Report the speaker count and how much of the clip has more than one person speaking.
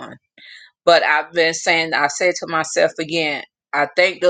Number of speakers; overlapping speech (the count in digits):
1, no overlap